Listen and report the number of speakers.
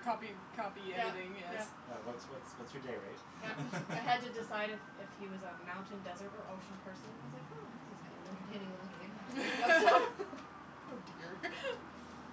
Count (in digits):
3